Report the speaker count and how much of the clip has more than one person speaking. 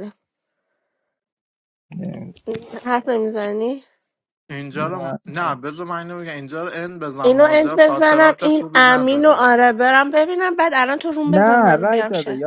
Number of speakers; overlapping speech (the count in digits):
3, about 26%